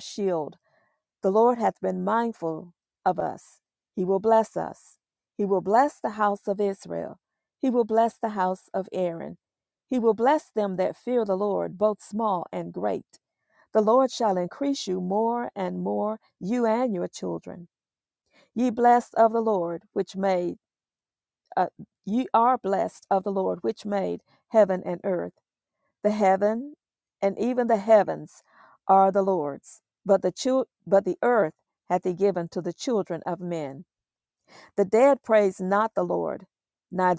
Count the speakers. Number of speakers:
1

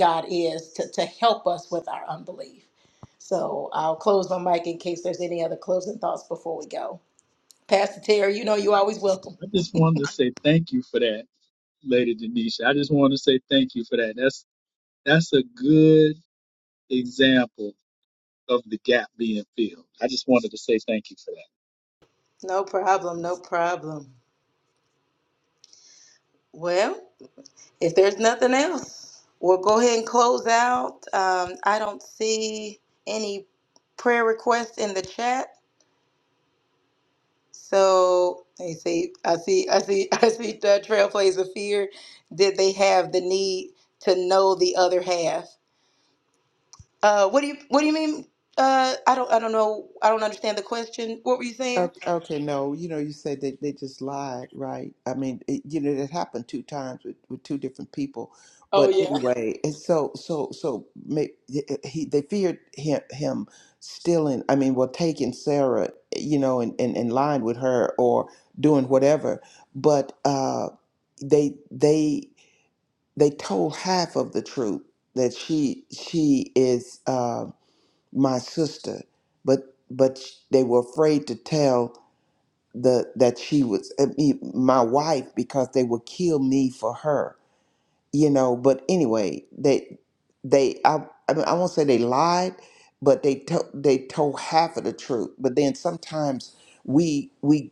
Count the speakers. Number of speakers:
3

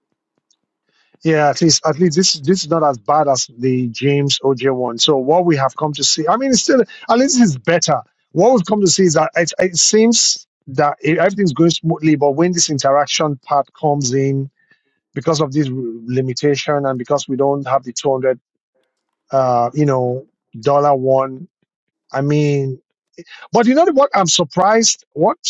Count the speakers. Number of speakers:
1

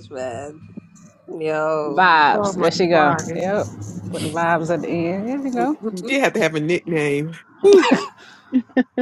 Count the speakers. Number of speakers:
3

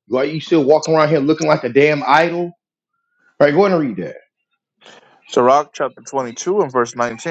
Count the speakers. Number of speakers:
2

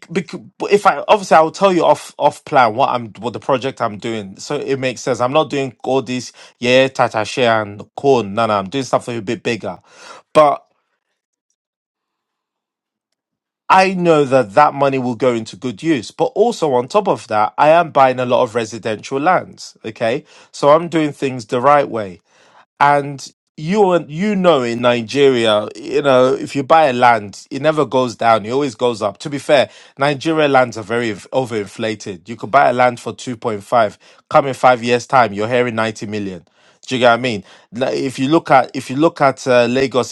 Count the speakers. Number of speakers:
1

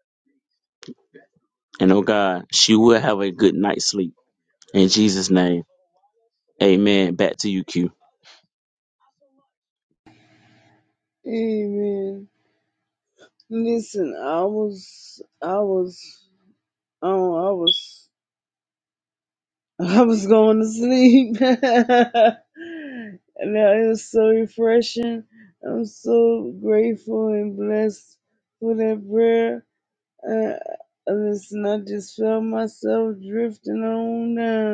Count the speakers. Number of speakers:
2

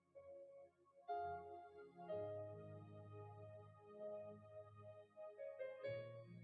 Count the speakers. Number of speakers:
0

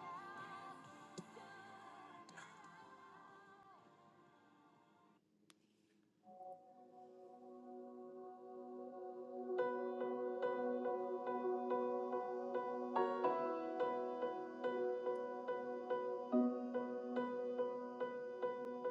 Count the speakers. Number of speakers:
0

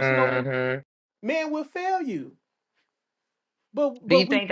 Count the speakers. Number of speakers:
2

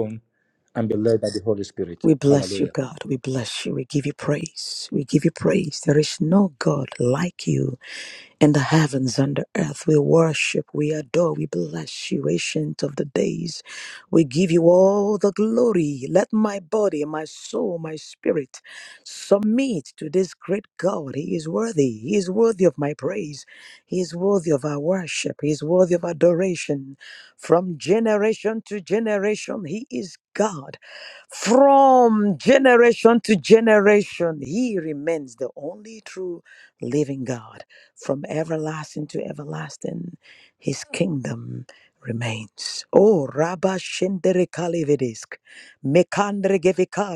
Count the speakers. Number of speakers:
2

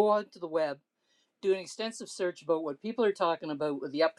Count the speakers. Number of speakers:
1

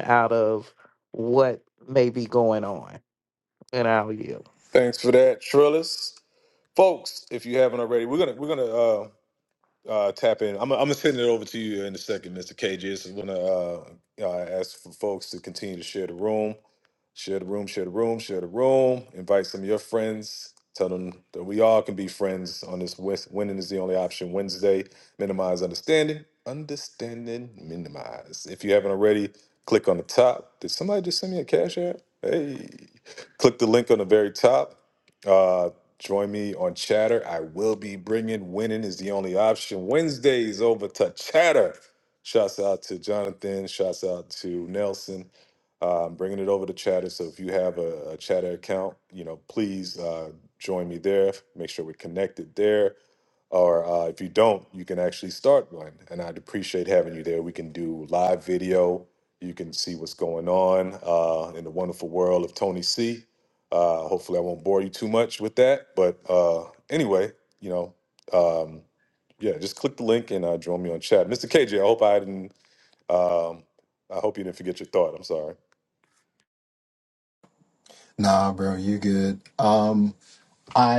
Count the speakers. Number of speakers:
3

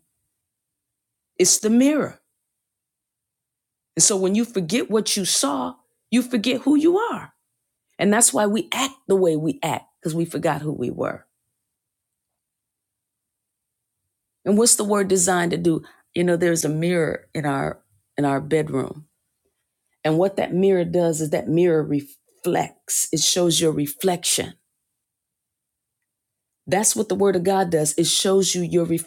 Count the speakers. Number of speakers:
1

